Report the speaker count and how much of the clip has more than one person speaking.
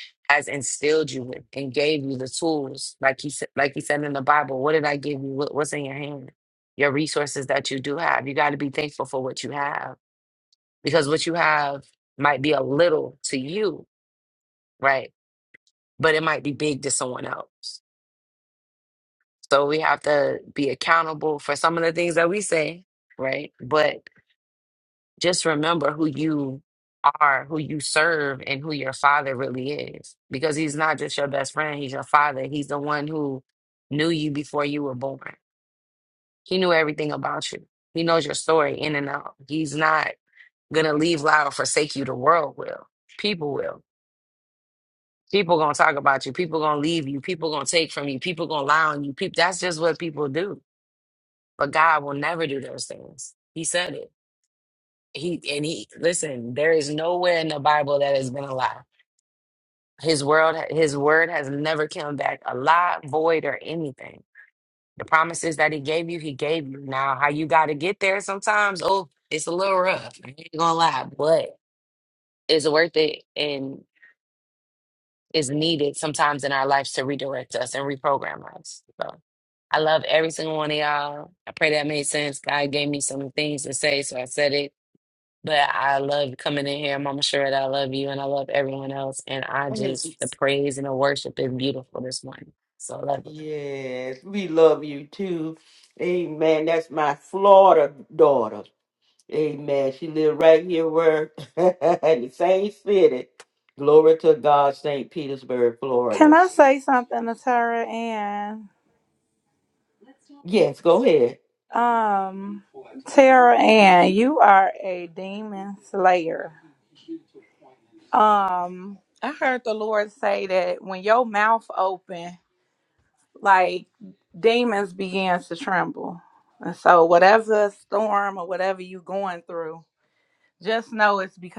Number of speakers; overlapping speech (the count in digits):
3, under 1%